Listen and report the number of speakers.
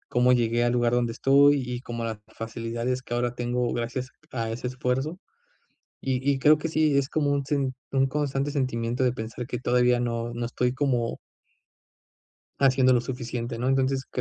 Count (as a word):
one